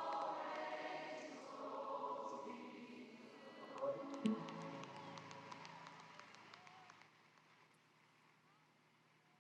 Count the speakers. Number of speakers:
0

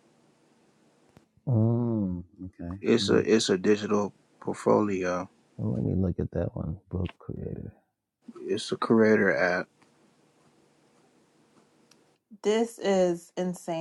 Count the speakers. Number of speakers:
3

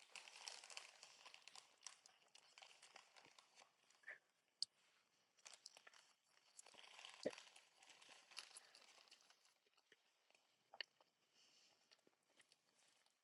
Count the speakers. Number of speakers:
0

